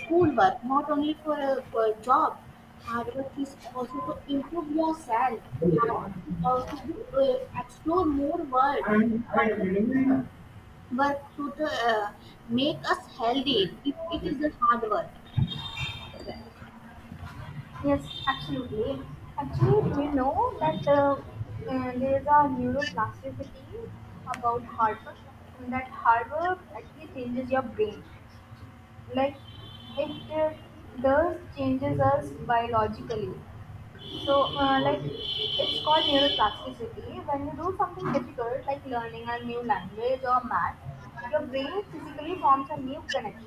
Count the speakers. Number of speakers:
2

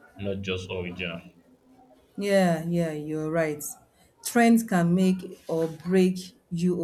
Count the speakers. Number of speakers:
2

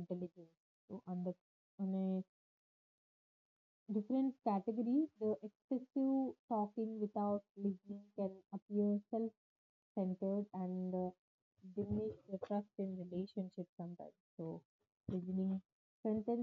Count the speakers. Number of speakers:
1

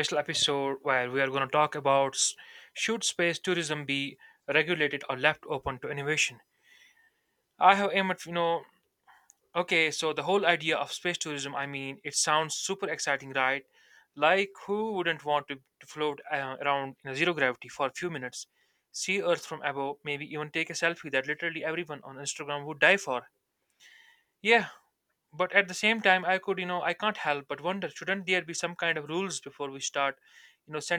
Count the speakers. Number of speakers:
1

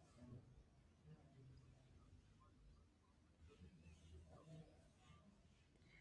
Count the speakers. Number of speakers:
0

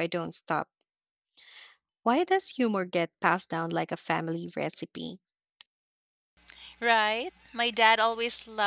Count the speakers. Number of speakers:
2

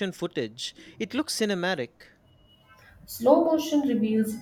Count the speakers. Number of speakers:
2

